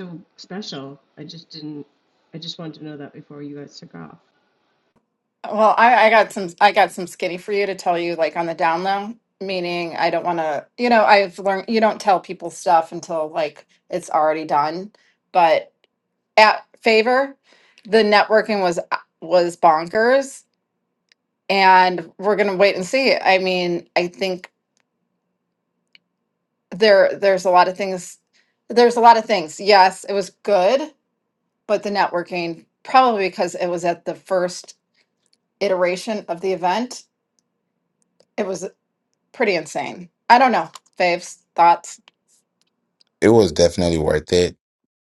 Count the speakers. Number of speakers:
three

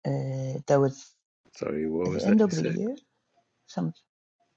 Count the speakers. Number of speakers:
two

